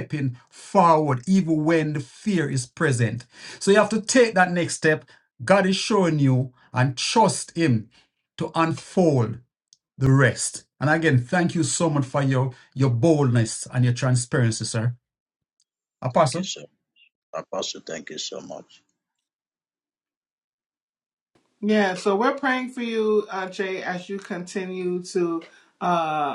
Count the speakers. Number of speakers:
3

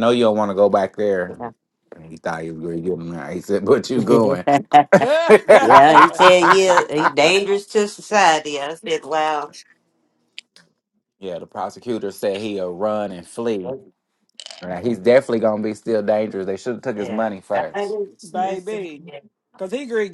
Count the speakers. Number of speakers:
3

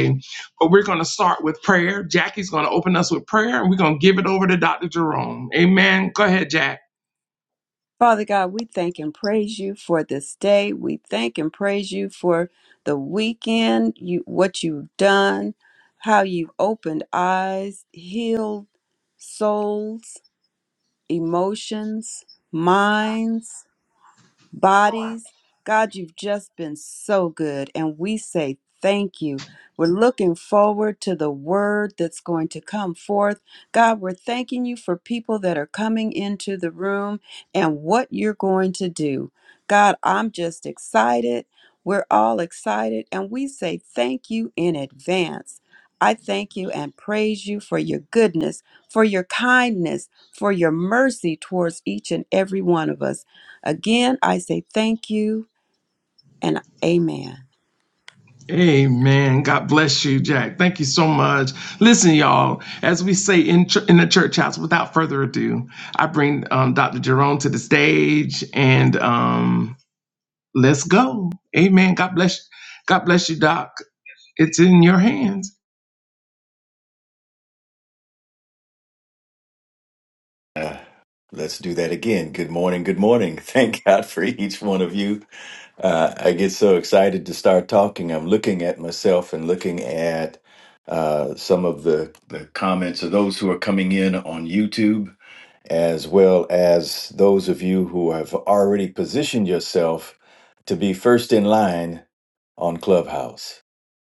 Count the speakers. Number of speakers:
3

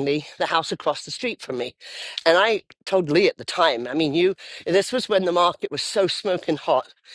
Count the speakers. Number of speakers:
1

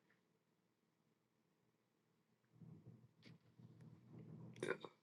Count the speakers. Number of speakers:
0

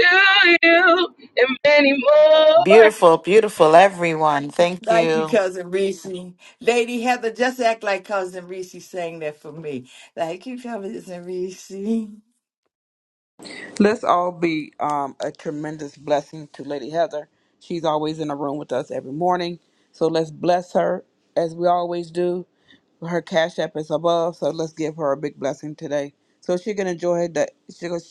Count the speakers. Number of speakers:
4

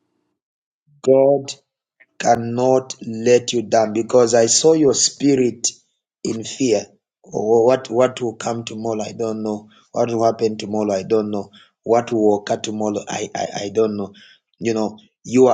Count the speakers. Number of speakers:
1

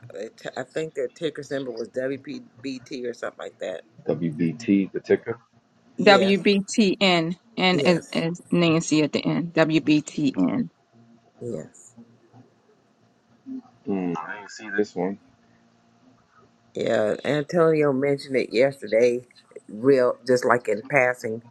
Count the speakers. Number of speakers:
3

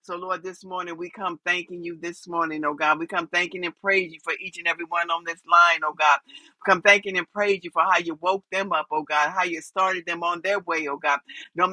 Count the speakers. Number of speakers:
1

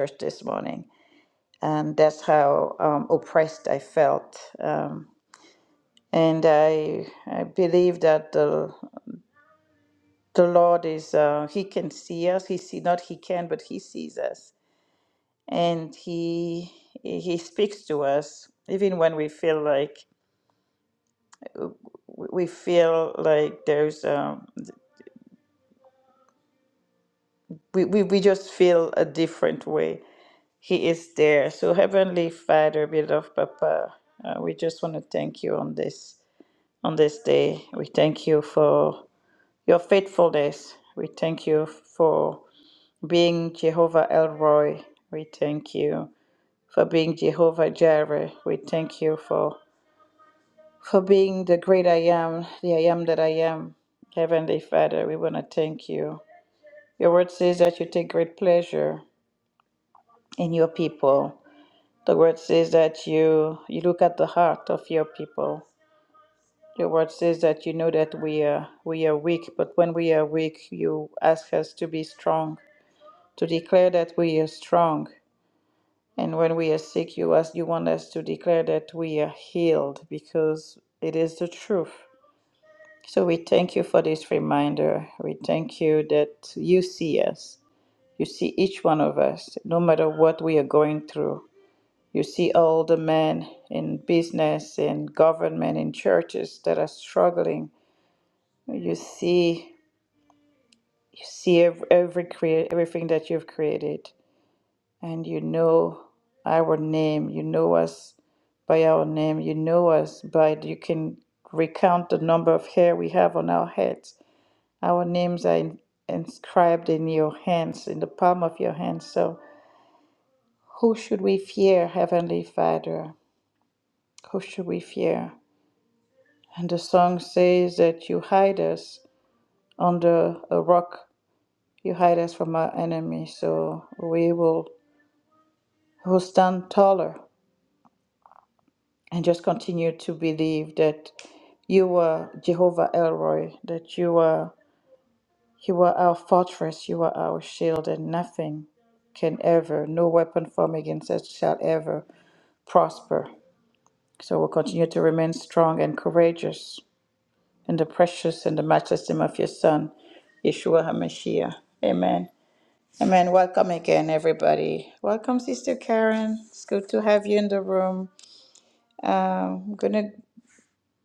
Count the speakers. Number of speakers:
1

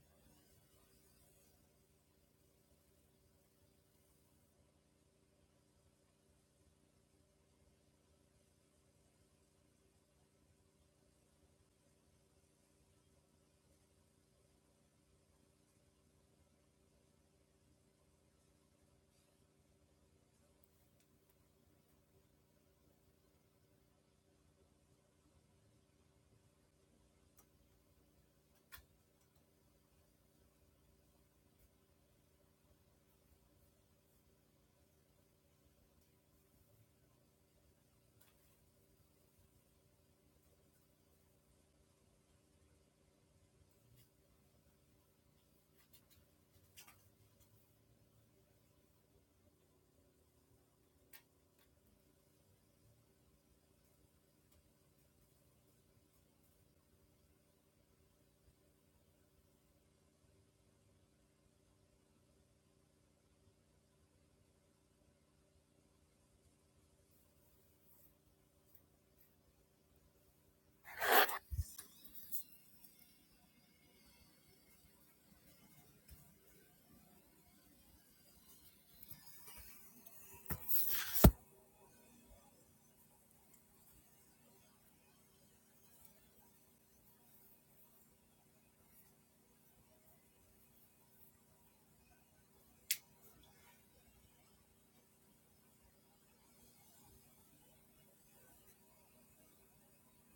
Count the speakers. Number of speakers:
0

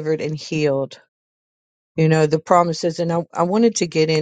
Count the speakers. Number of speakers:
1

